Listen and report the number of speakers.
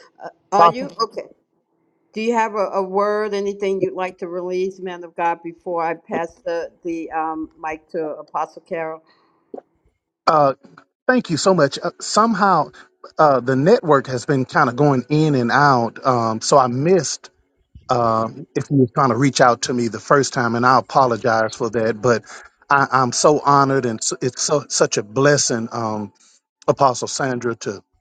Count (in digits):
2